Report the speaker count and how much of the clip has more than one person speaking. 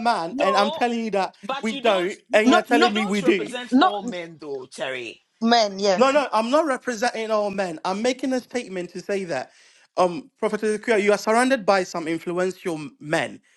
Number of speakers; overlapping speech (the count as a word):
three, about 22%